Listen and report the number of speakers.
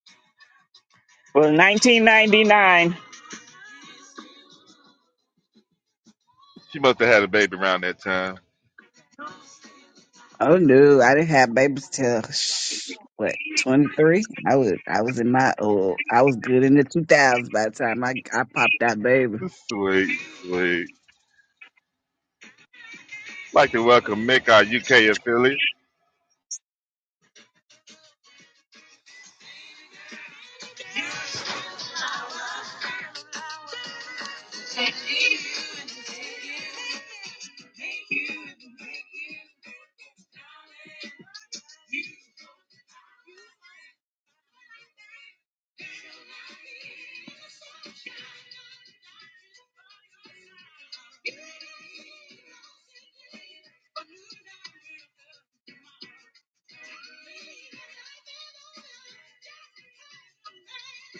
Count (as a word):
three